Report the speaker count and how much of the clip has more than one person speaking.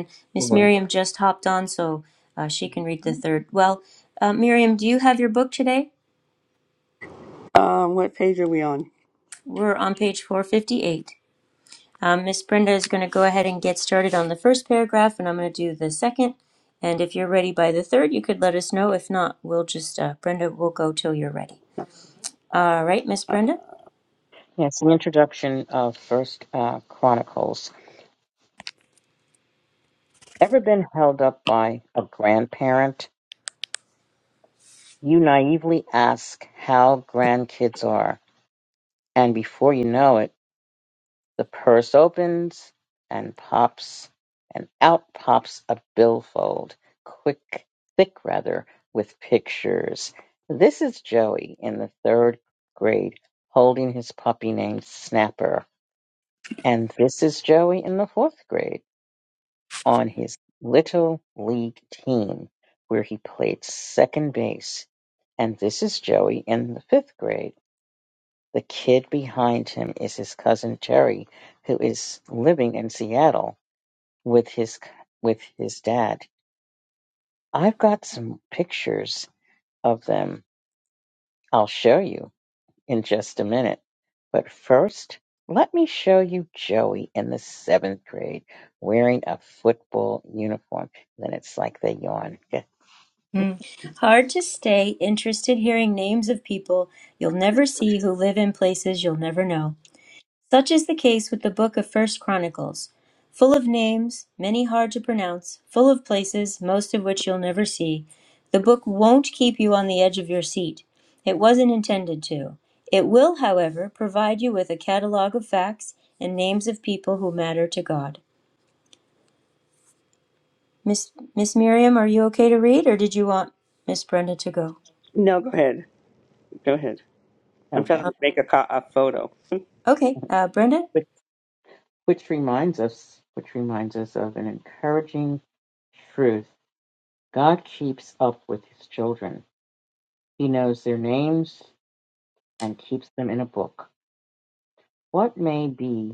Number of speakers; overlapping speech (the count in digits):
3, about 1%